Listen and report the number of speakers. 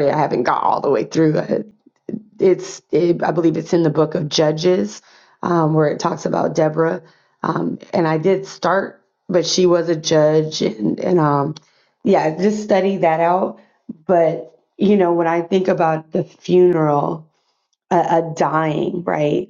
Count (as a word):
one